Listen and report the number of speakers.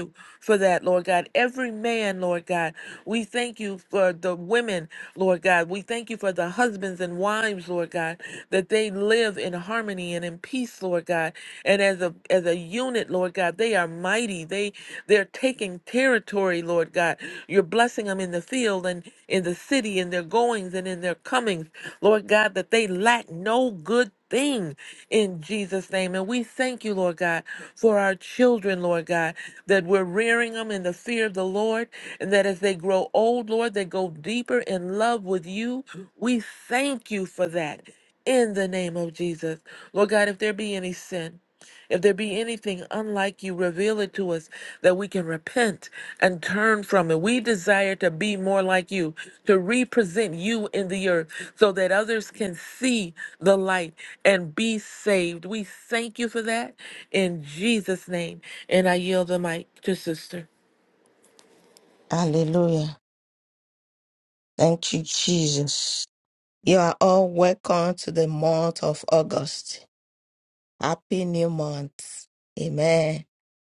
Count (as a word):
two